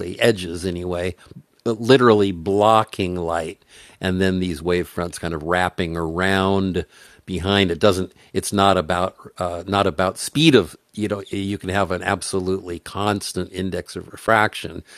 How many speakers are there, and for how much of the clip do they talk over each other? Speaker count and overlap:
1, no overlap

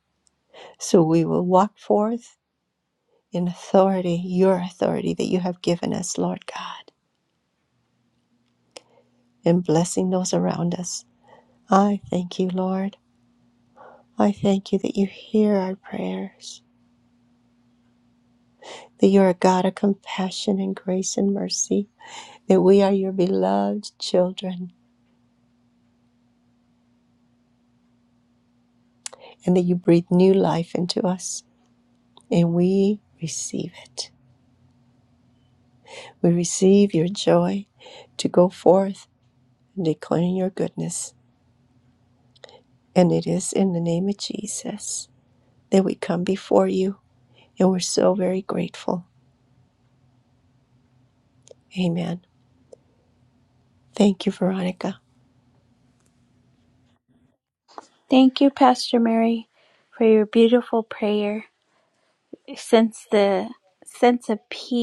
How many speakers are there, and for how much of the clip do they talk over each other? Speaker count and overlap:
2, no overlap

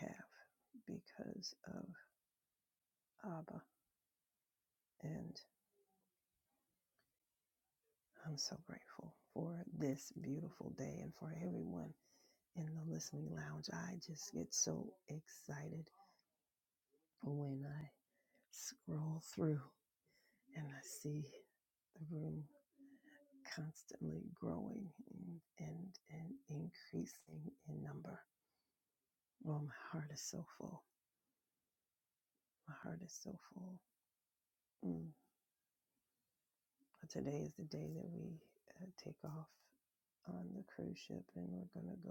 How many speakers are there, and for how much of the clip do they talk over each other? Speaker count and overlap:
1, no overlap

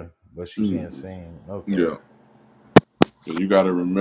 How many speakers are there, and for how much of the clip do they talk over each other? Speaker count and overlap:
2, about 14%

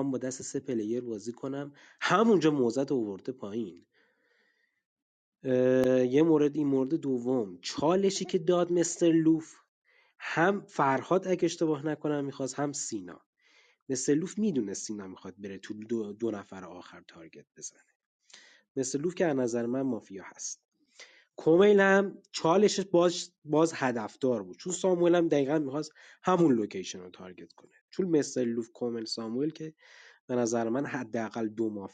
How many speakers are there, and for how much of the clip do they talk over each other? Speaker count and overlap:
1, no overlap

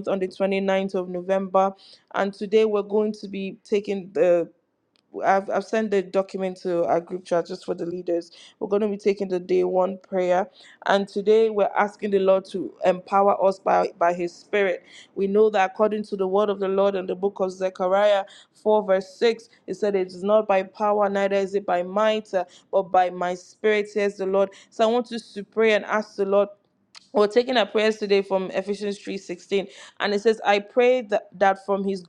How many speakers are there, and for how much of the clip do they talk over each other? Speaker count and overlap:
1, no overlap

